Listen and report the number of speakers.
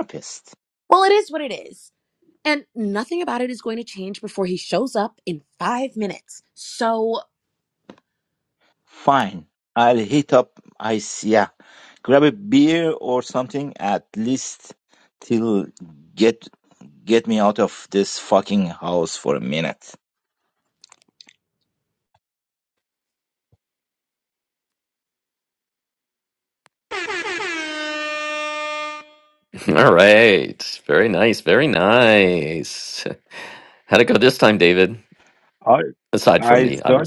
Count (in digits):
3